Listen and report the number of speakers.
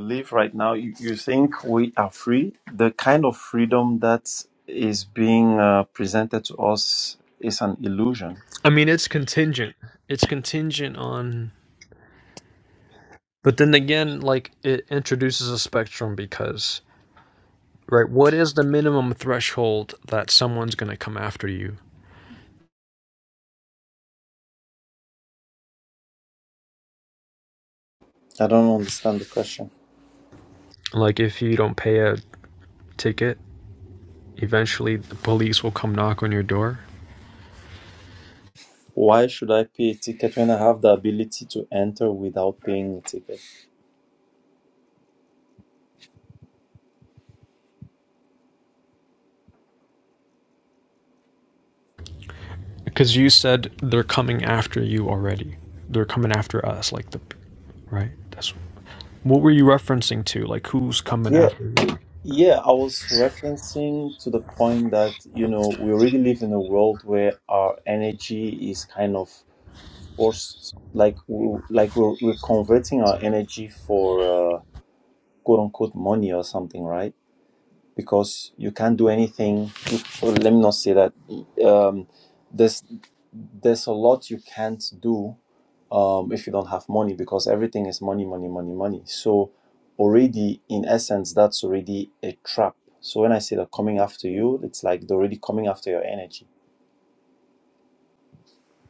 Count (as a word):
two